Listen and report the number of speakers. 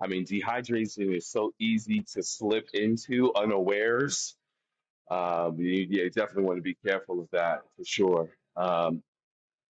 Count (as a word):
one